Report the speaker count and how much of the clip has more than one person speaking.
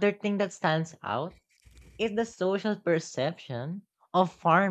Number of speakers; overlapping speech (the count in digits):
1, no overlap